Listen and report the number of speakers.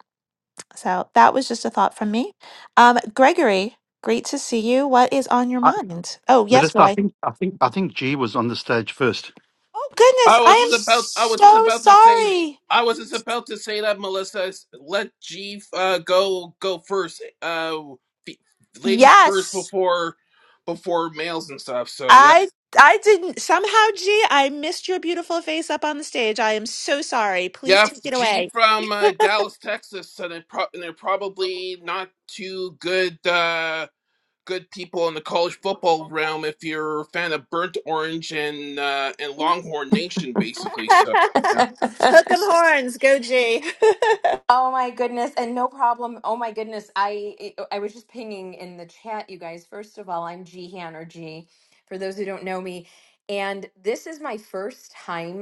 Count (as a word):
four